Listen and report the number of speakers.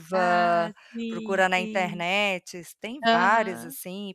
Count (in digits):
2